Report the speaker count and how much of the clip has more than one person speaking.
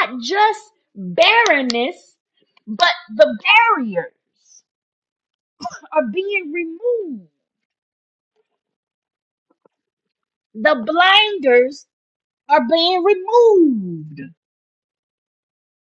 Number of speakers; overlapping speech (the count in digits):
1, no overlap